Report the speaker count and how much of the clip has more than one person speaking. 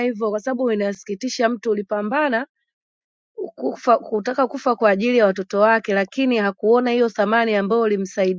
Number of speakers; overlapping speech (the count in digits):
1, no overlap